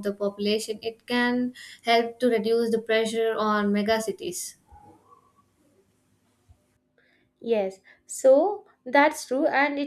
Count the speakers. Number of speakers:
two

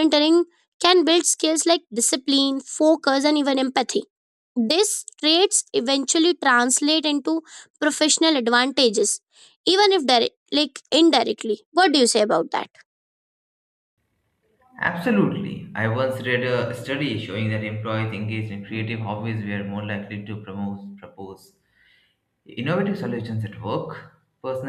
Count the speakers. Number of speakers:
two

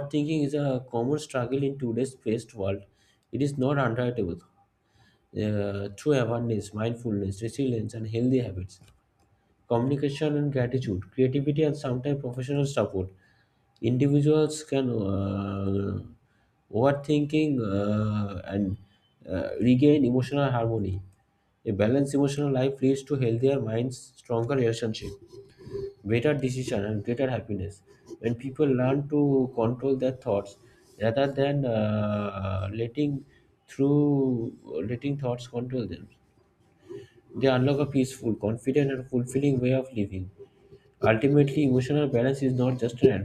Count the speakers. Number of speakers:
one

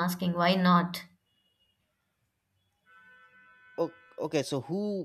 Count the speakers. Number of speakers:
two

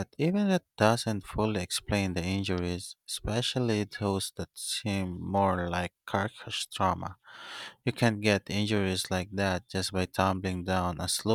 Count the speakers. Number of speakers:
one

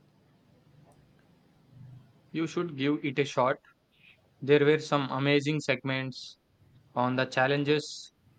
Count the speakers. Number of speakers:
one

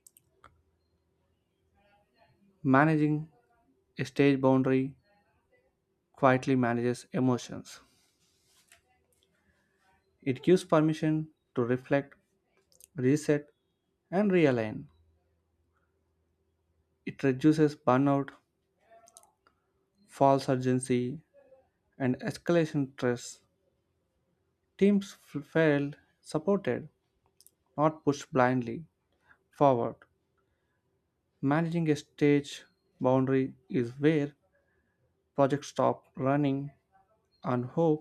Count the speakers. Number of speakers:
one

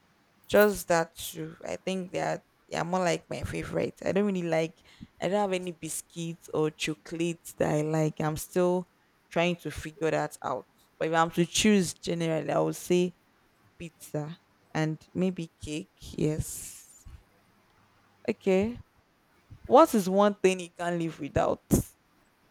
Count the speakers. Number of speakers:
one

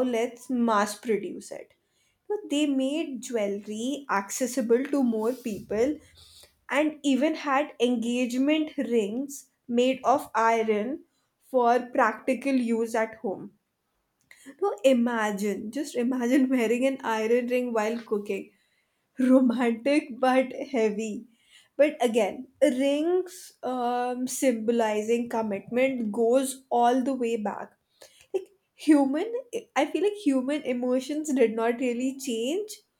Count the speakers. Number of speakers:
one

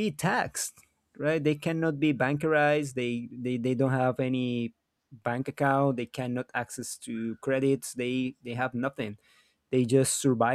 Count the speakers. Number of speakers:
one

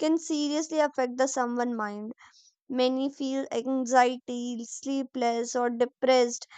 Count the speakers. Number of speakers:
one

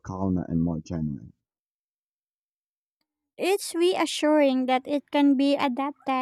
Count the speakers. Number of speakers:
two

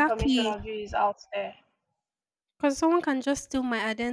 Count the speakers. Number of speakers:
two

